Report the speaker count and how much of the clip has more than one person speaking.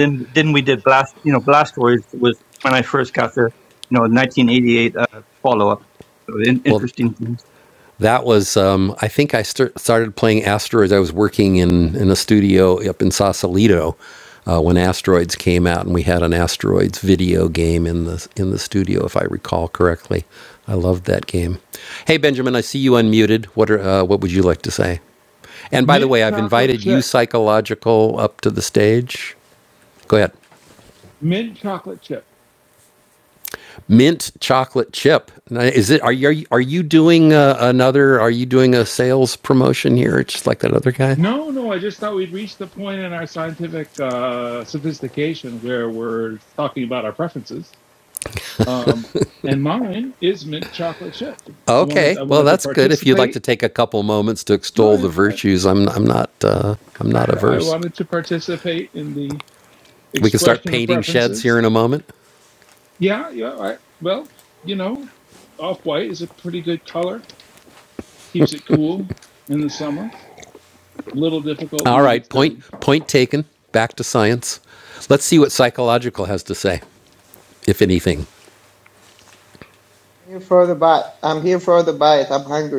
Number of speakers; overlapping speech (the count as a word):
four, about 8%